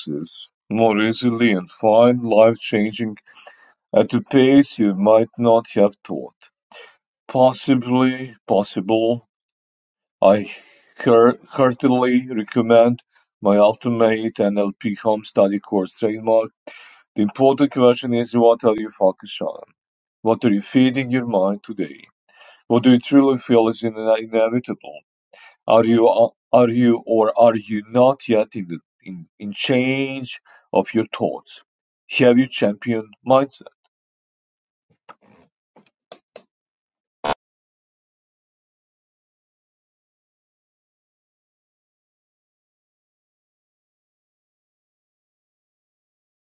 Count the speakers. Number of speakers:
one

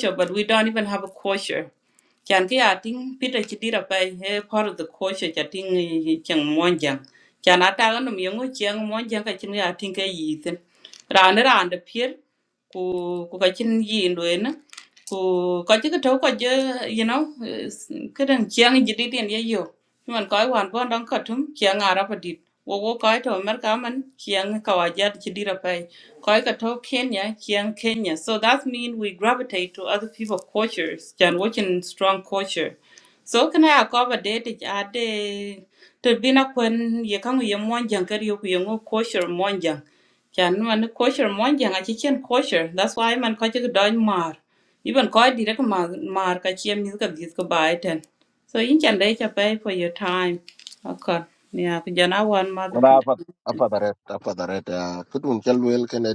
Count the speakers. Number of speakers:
two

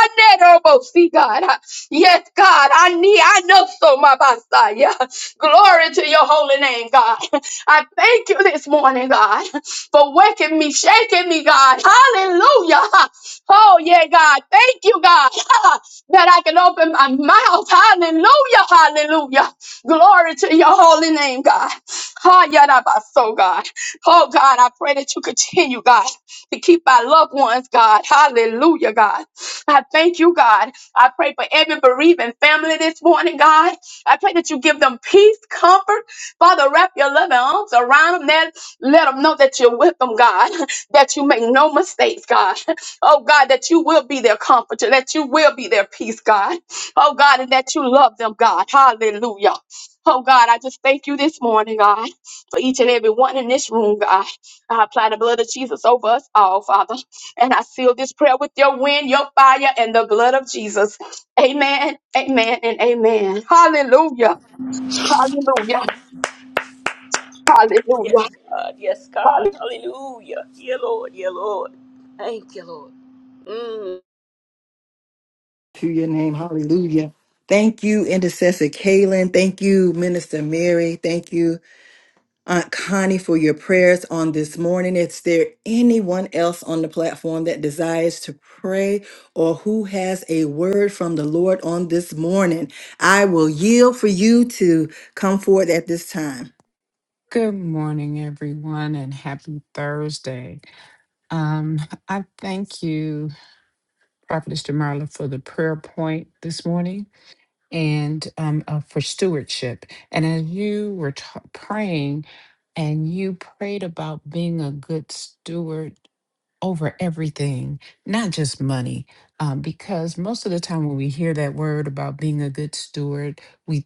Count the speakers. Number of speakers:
four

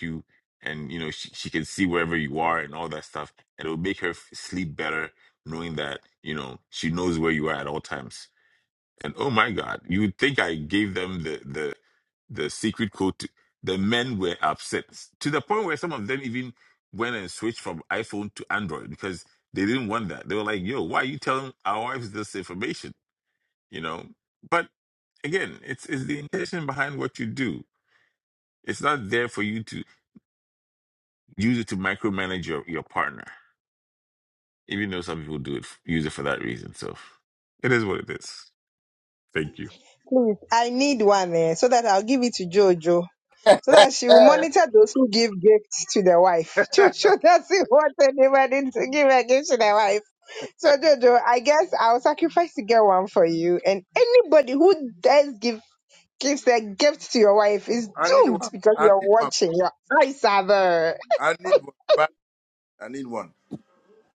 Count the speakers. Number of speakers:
three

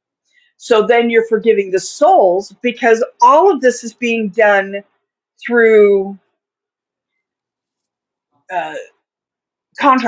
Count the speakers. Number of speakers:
one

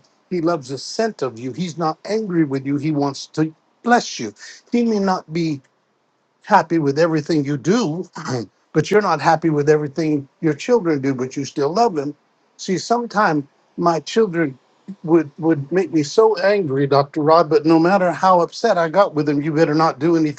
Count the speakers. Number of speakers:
one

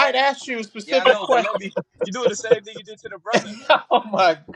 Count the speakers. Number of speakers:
two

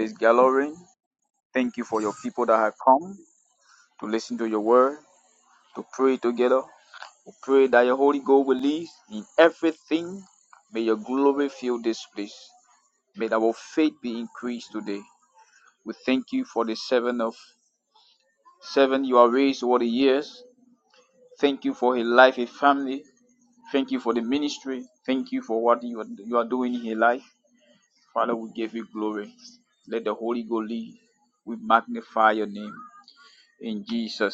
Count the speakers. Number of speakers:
one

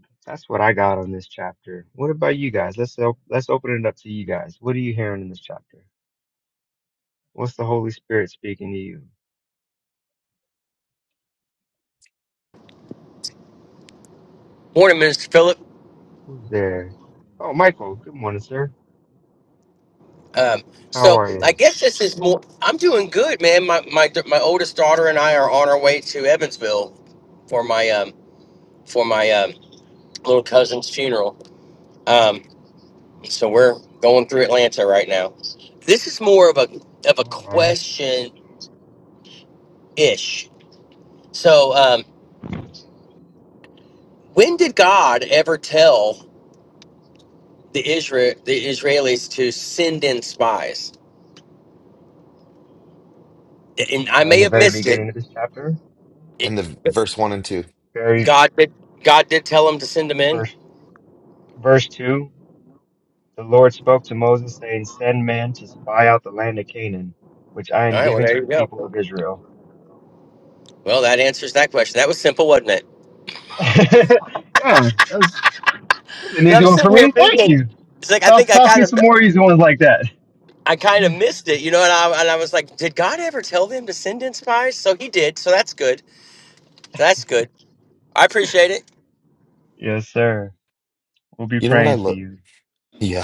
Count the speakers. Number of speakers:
three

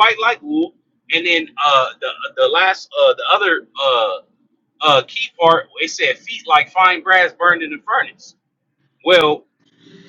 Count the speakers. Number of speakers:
one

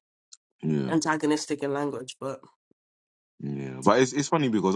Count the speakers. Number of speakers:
two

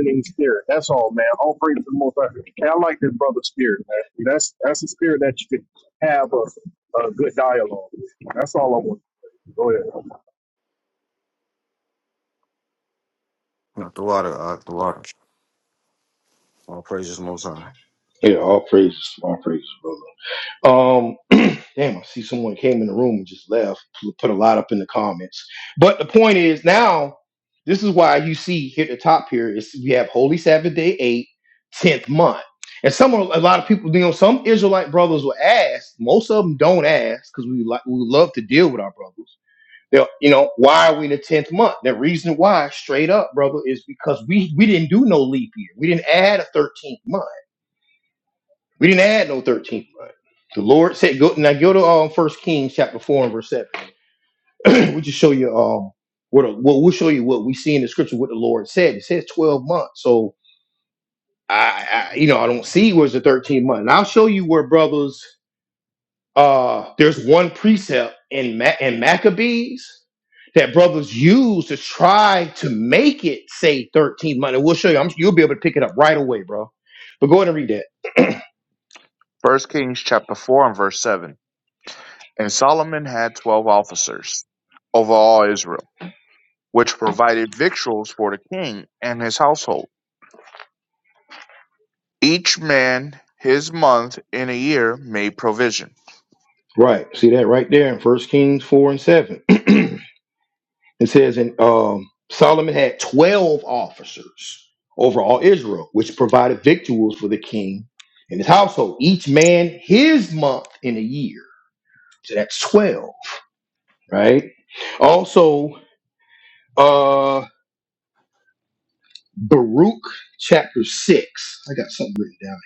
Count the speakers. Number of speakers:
four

